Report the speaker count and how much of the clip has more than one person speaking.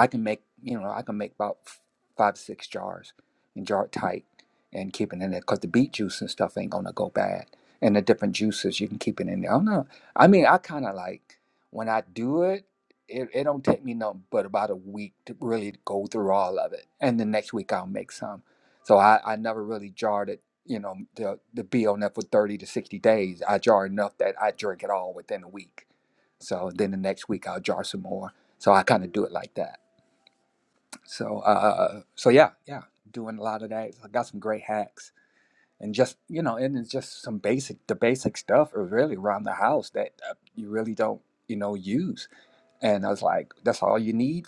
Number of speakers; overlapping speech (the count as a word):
one, no overlap